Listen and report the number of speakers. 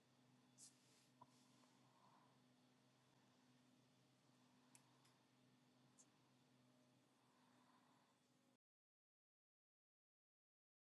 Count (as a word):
zero